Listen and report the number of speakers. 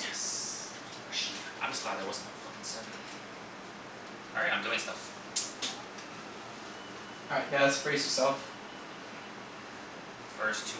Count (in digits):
2